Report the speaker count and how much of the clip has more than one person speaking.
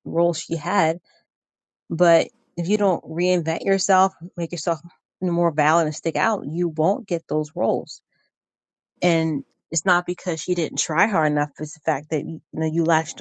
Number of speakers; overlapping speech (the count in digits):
1, no overlap